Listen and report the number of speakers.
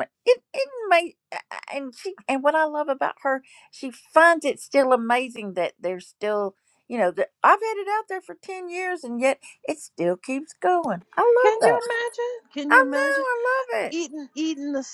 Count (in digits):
2